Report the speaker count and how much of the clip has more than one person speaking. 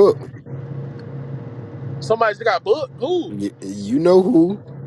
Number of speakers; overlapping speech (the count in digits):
2, under 1%